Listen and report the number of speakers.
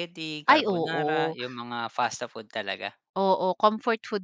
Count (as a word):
two